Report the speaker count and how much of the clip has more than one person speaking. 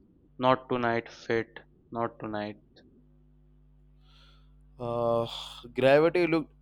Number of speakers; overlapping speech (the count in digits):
2, no overlap